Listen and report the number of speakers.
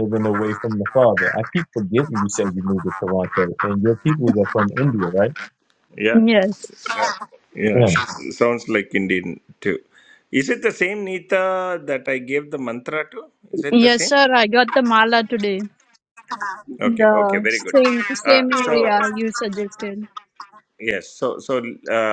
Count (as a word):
three